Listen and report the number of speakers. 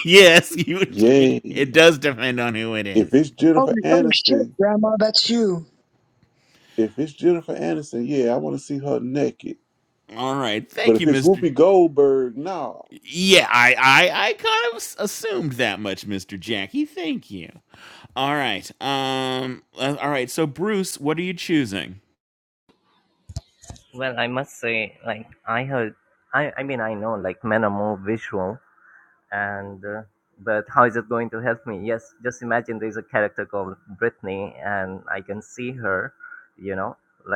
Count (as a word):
four